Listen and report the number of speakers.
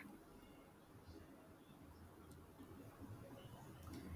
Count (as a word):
zero